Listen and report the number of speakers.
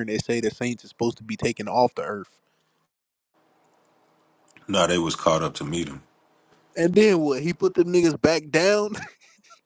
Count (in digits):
2